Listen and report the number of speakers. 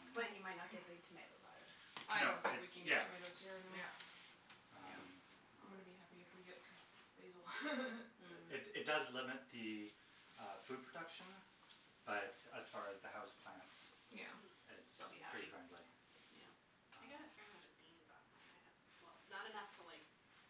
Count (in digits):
4